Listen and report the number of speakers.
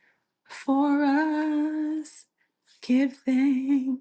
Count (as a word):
one